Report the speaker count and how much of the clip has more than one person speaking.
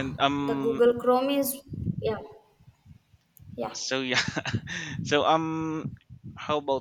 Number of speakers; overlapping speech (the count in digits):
2, about 7%